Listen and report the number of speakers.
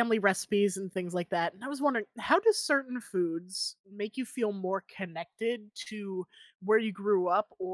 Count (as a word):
one